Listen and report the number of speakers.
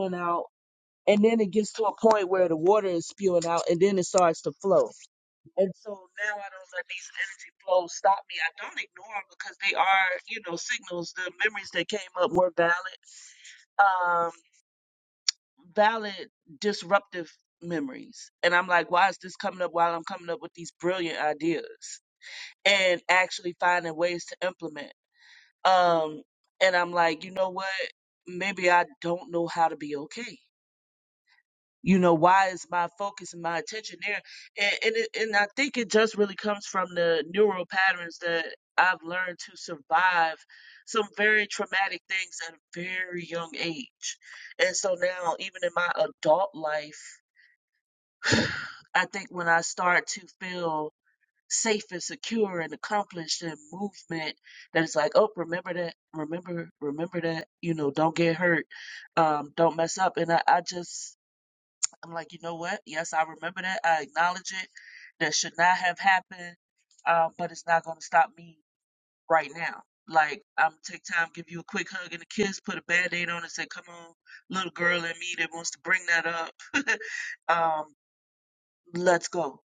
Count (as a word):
one